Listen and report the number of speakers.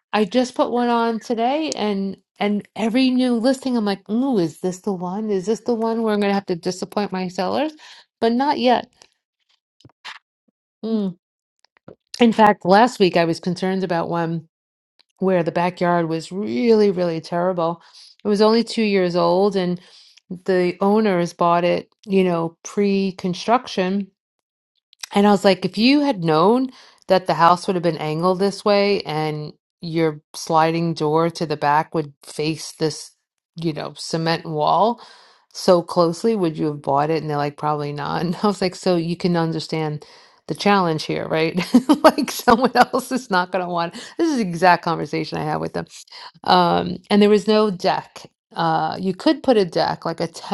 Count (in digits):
1